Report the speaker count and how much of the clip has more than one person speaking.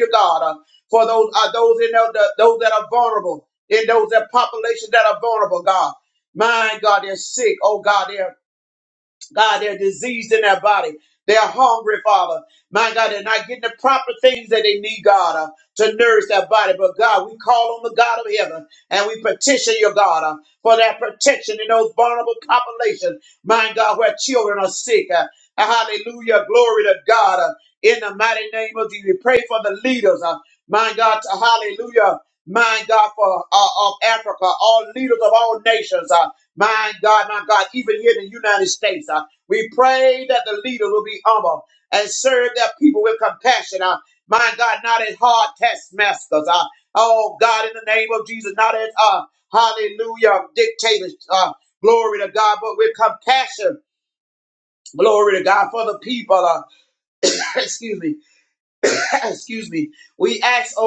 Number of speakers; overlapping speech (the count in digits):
1, no overlap